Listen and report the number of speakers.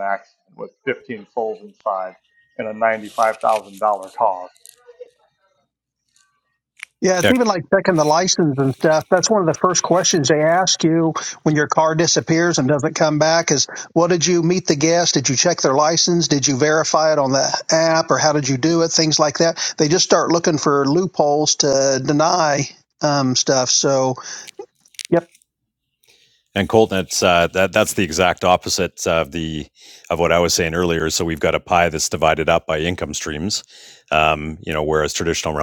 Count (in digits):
3